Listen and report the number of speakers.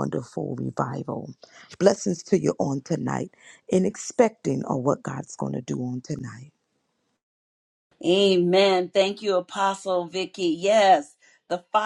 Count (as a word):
two